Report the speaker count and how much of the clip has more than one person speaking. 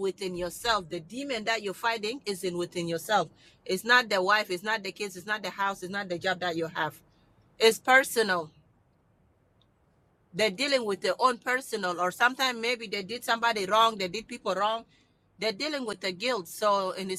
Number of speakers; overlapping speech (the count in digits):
1, no overlap